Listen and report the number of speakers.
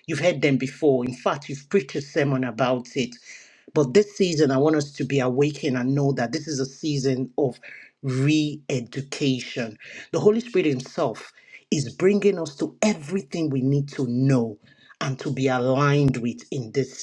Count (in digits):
1